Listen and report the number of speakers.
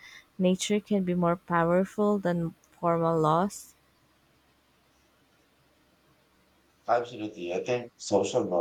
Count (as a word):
two